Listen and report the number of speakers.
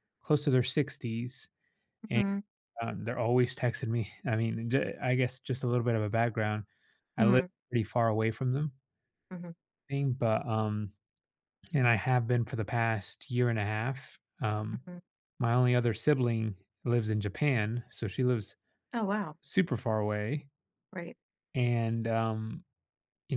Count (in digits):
2